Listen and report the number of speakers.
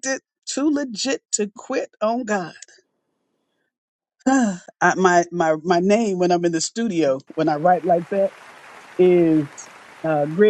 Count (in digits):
1